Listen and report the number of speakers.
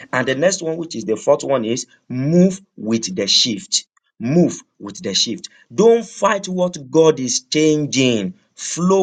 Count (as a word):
one